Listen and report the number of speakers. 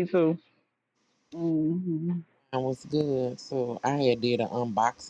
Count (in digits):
2